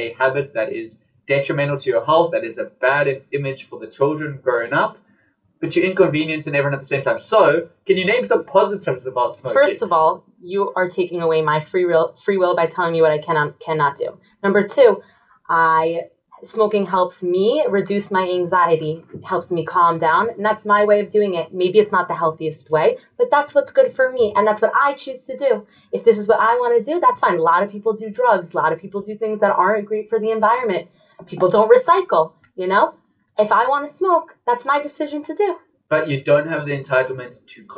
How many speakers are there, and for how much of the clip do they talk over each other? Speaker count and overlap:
2, about 2%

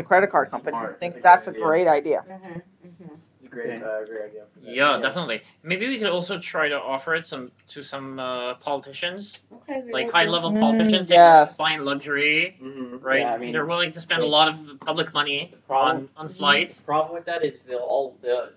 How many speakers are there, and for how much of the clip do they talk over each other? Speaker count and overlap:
5, about 29%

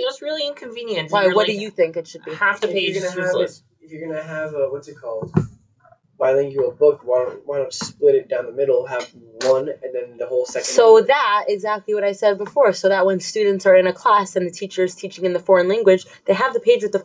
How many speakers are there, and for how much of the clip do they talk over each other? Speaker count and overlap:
3, about 13%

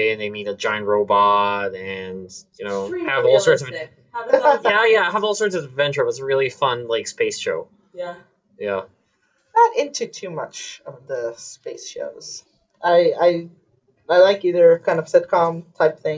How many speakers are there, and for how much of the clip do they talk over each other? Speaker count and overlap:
3, about 12%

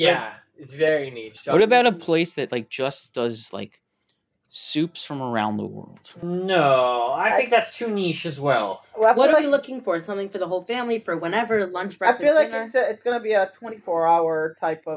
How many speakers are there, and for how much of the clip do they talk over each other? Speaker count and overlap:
5, about 14%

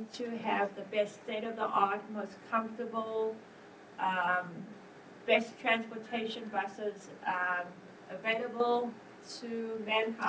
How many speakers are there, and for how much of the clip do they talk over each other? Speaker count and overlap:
1, no overlap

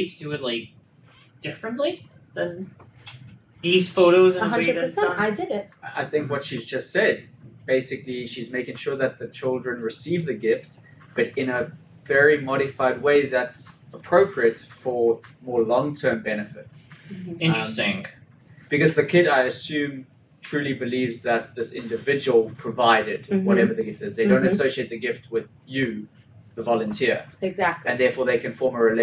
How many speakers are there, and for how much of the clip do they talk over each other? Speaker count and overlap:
3, about 8%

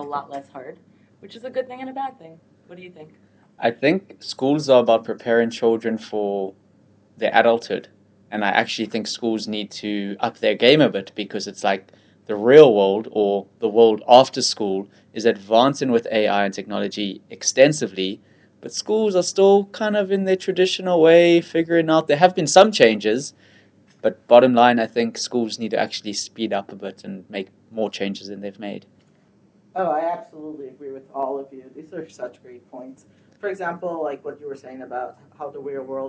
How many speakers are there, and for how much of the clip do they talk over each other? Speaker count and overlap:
3, no overlap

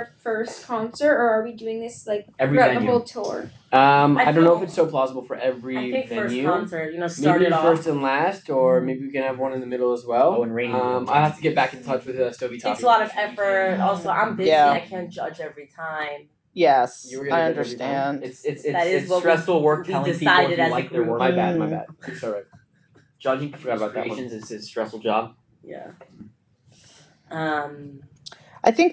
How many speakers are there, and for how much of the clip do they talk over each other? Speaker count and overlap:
5, about 41%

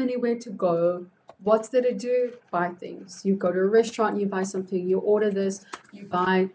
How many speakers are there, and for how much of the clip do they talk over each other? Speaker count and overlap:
1, no overlap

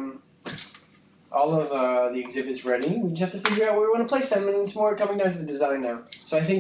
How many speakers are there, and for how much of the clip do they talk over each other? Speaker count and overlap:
1, no overlap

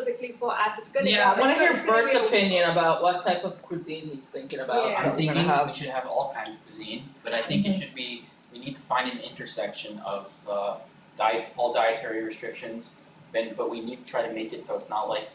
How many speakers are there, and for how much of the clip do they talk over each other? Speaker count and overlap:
3, about 20%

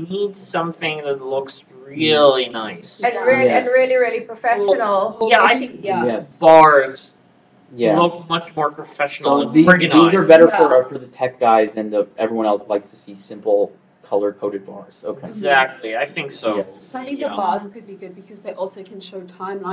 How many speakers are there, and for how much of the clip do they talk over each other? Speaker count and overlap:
4, about 29%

